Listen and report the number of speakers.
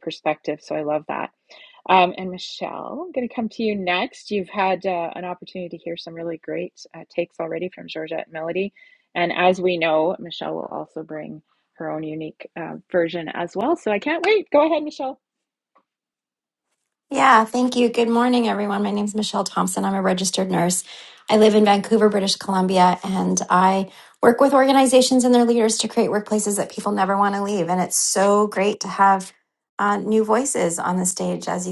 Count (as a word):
two